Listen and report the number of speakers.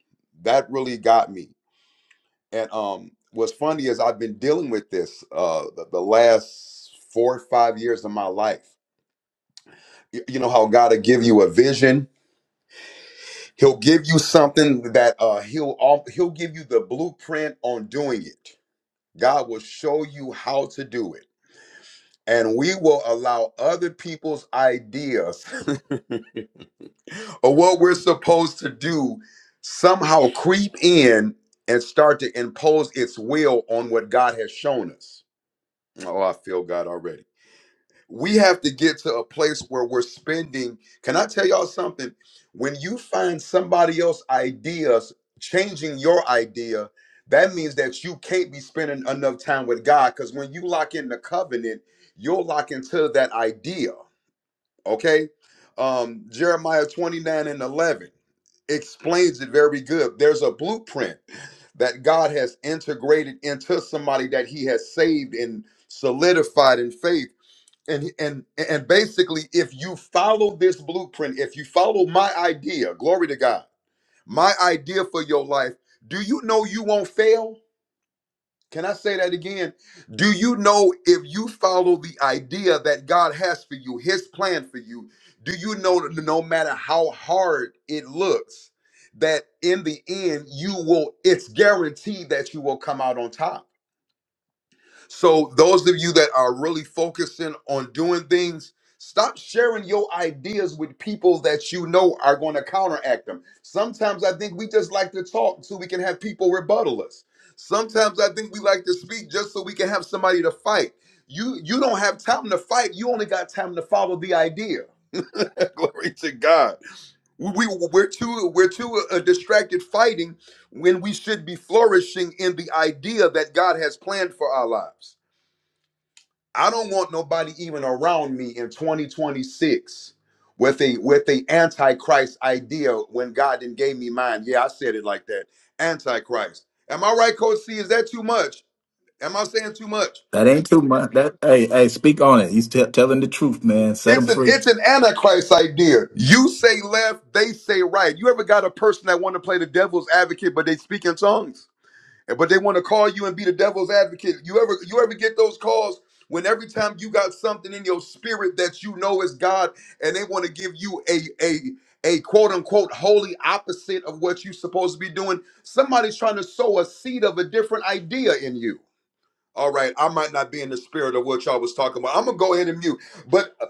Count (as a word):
two